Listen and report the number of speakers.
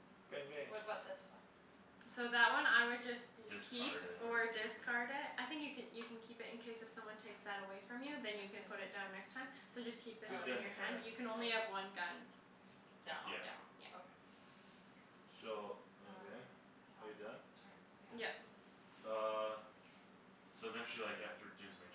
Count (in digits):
4